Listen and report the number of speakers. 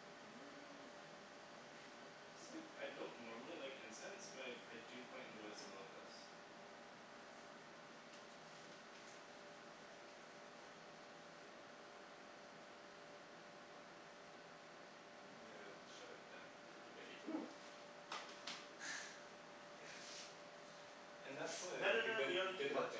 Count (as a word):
two